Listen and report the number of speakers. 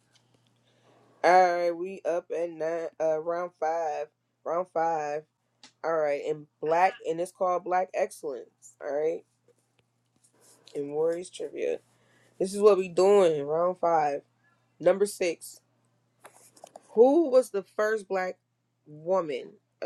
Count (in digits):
1